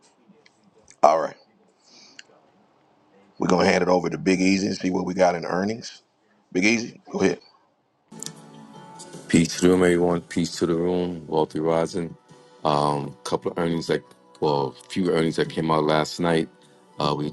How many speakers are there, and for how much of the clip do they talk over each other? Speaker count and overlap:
2, no overlap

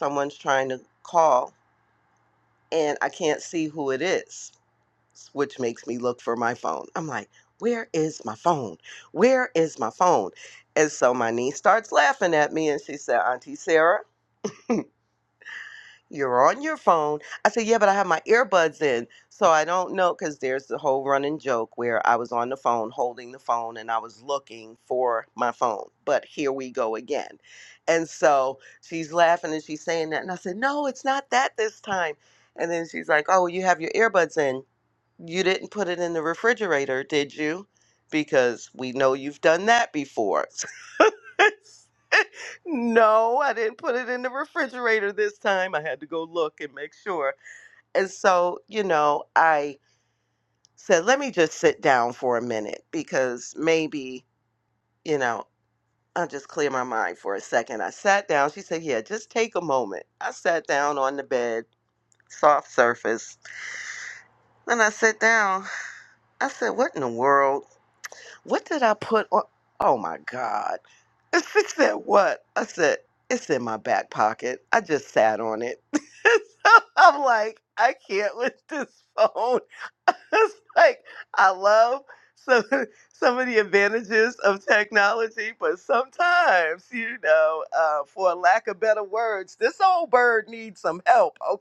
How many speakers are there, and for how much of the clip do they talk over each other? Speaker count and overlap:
1, no overlap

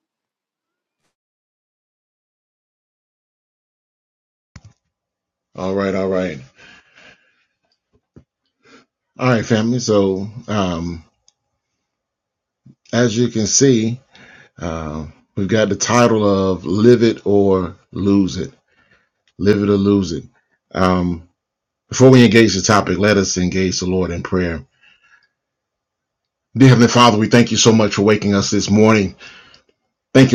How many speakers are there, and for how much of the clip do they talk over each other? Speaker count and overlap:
1, no overlap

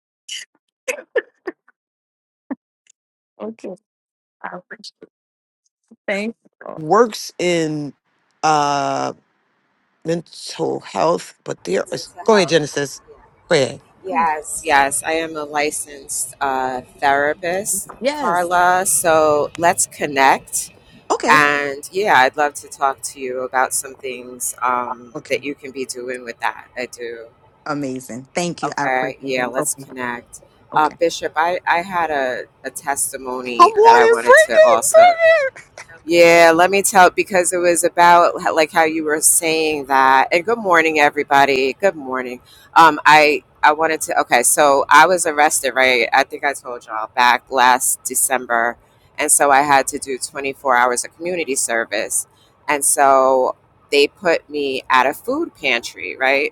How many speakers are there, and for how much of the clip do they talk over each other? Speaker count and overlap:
3, about 7%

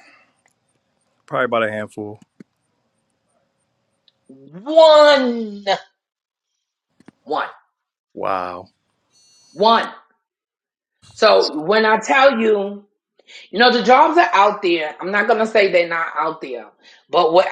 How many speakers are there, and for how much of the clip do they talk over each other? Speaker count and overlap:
2, no overlap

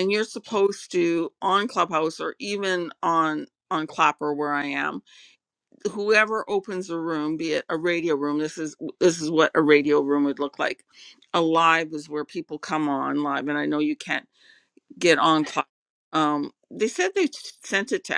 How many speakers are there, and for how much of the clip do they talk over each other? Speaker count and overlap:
1, no overlap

